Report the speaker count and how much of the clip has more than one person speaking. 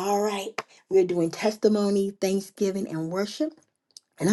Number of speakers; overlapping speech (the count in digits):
1, no overlap